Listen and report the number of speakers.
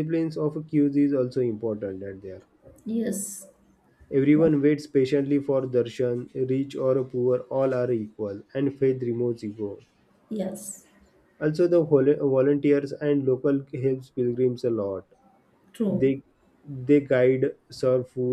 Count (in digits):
2